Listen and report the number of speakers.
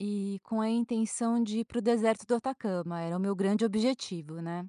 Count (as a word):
one